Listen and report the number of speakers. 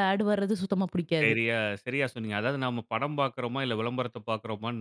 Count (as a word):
two